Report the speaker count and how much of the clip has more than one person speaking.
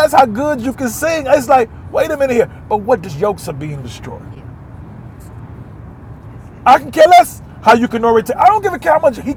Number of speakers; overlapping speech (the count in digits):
1, no overlap